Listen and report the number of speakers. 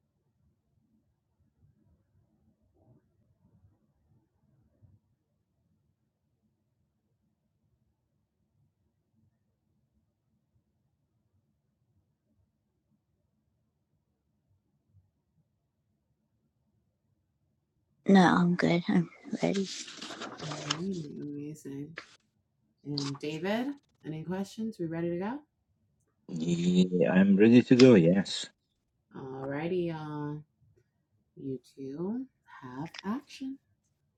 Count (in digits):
3